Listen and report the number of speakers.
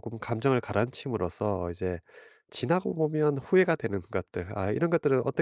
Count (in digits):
1